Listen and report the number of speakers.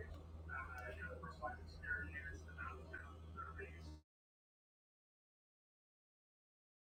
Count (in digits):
0